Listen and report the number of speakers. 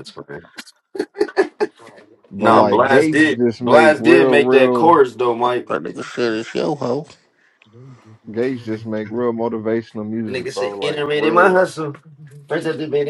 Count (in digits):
3